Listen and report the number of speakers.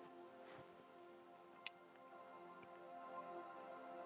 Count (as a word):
zero